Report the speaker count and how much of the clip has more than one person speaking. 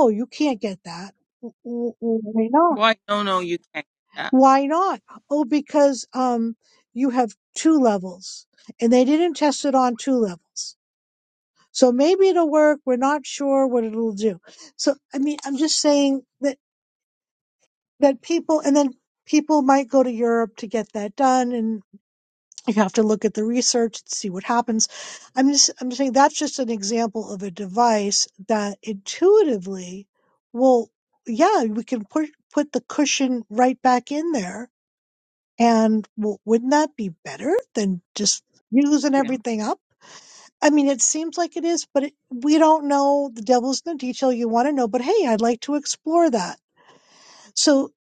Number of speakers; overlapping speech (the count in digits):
2, about 1%